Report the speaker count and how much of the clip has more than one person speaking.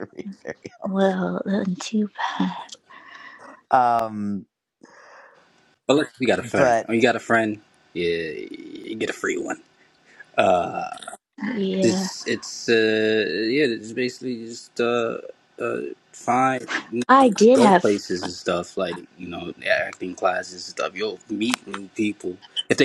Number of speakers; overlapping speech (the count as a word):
three, about 5%